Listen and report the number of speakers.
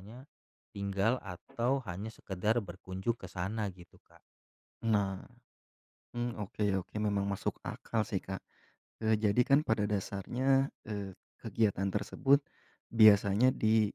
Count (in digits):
2